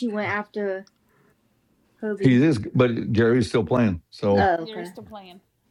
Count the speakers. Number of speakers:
three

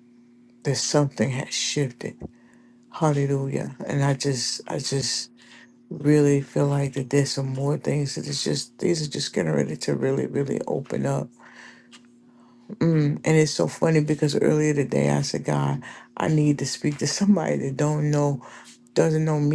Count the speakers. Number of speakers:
one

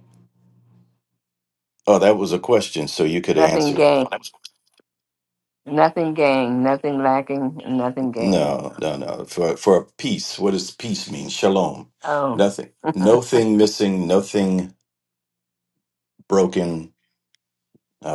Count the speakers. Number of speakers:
two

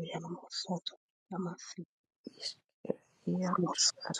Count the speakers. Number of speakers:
two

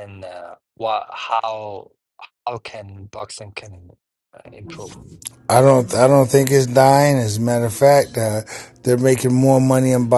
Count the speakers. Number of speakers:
two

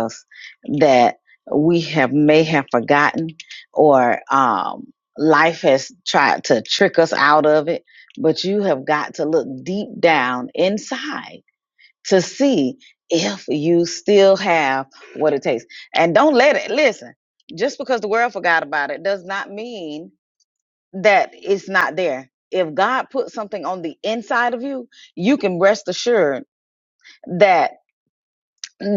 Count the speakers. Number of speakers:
one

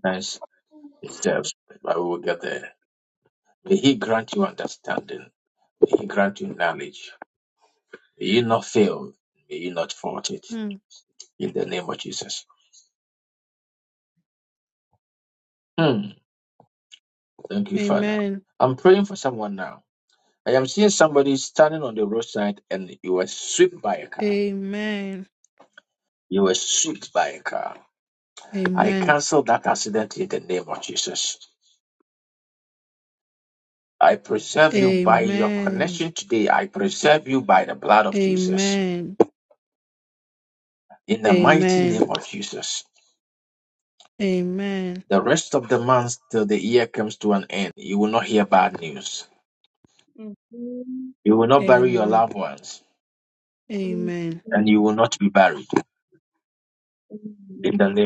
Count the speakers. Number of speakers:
three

